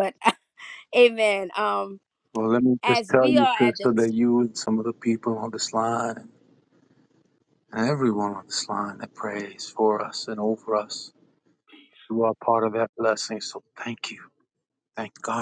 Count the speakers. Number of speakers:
two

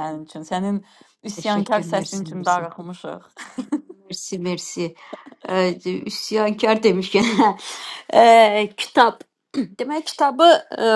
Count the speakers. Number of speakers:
two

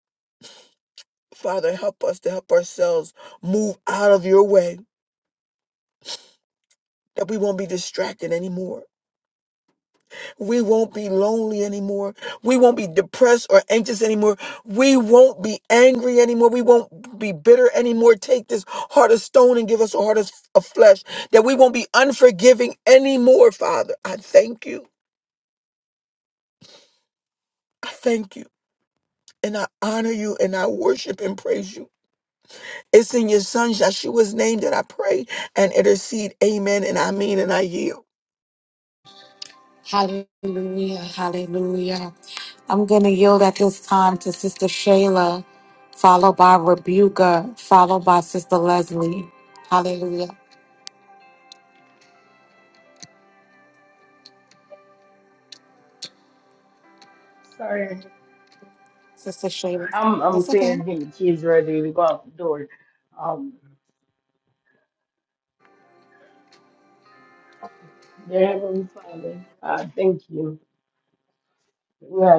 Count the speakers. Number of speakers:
three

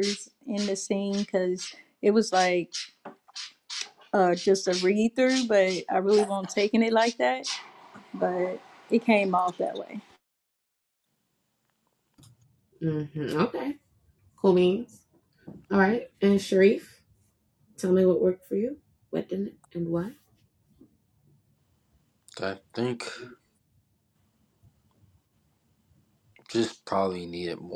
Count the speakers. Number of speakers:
three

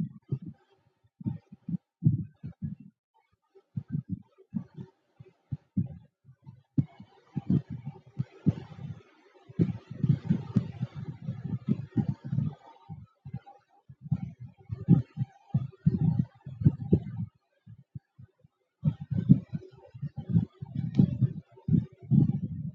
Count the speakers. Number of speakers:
zero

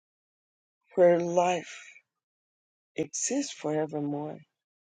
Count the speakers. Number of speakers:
one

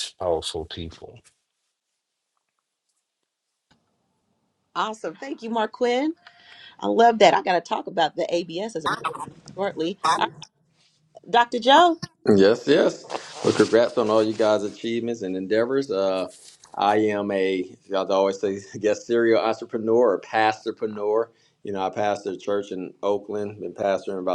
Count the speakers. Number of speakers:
three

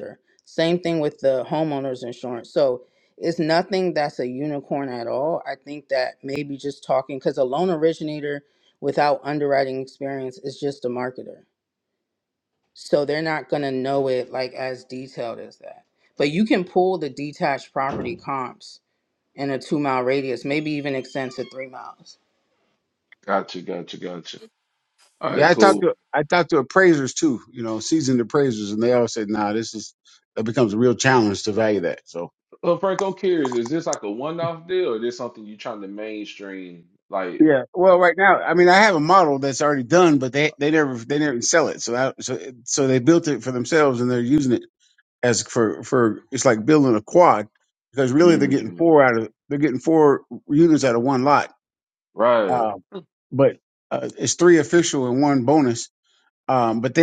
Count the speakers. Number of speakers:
three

